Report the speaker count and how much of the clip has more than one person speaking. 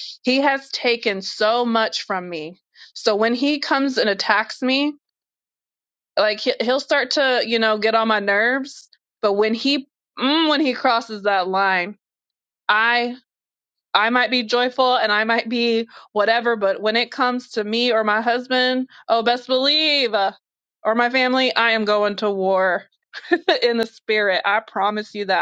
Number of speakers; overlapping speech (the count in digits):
1, no overlap